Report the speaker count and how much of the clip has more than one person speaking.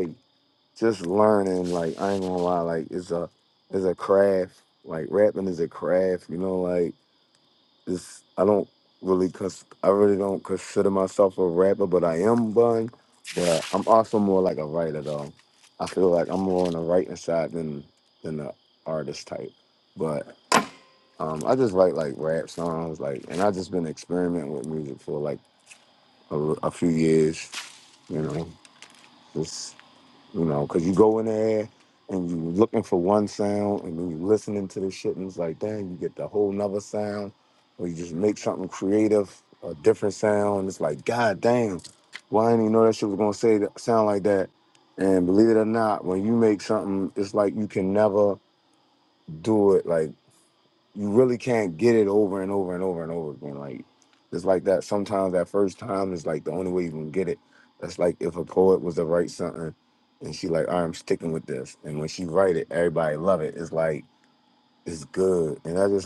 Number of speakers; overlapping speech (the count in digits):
1, no overlap